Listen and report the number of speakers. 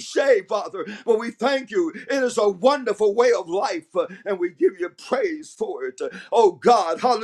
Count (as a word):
one